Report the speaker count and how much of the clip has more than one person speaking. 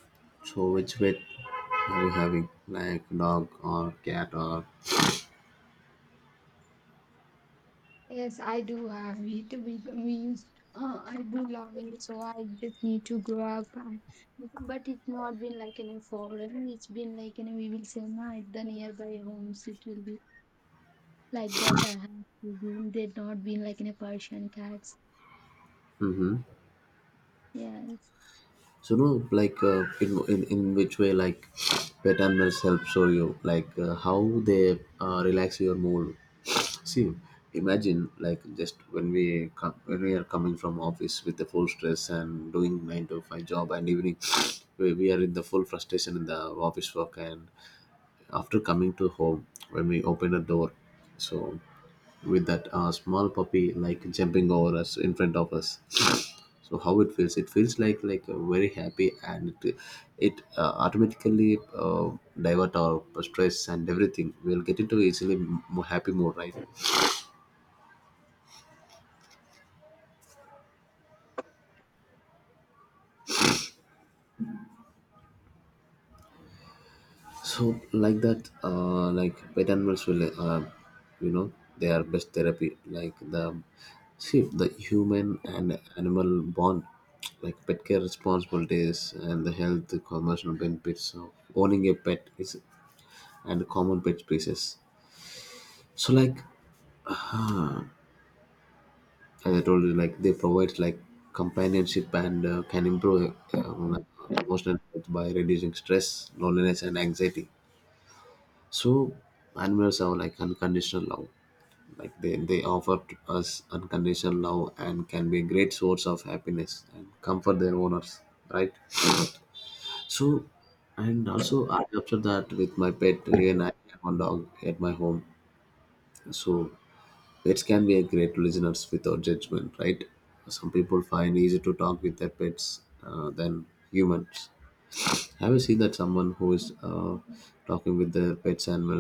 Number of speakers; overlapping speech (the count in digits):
2, no overlap